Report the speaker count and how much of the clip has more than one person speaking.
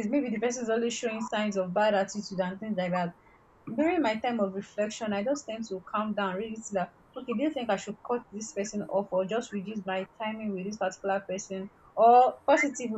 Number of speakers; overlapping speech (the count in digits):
1, no overlap